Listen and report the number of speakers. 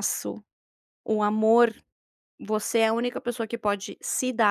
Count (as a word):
one